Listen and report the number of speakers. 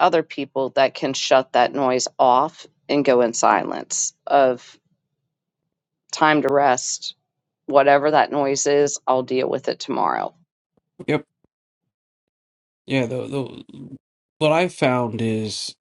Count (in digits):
2